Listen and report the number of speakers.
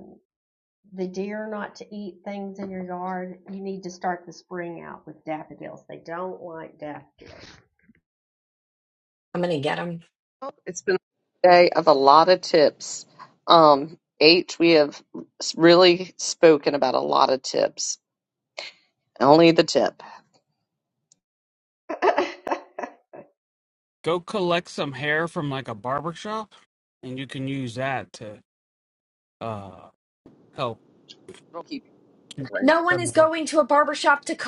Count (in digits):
4